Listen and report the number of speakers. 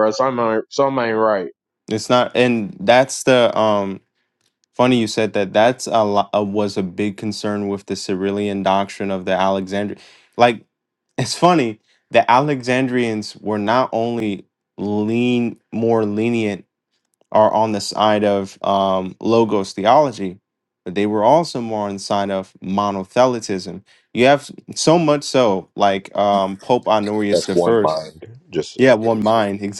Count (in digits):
3